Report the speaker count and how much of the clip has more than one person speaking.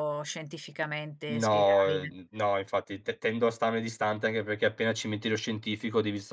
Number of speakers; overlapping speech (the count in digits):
2, about 13%